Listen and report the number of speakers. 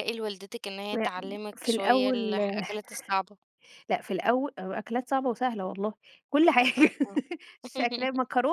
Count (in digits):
2